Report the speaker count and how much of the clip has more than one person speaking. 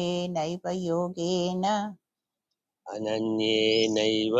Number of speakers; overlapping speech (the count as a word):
two, no overlap